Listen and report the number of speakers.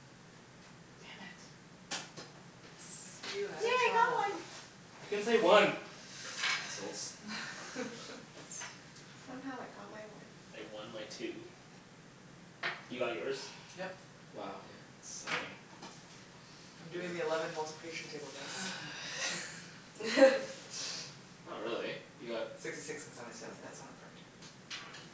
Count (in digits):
4